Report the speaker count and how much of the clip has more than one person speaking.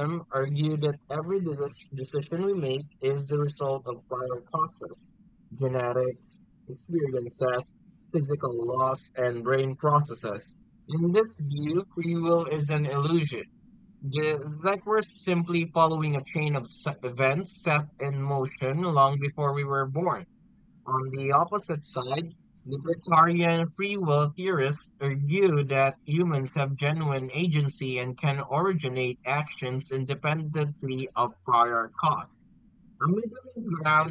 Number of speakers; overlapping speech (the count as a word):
one, no overlap